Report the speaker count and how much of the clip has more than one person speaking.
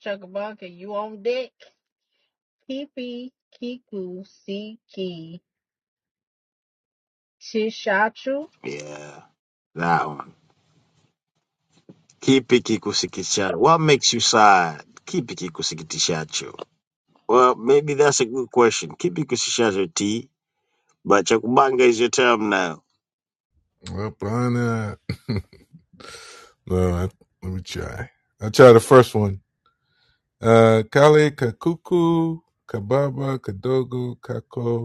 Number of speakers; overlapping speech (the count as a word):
three, no overlap